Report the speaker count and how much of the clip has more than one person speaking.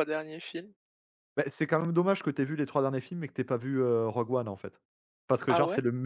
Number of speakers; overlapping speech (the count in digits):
2, about 5%